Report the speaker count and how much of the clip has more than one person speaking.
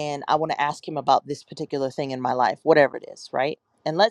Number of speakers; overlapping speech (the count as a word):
one, no overlap